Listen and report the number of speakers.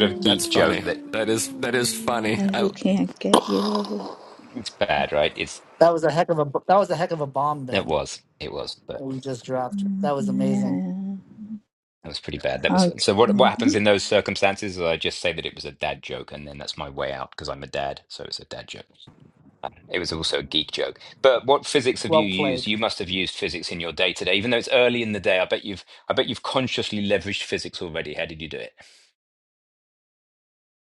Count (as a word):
four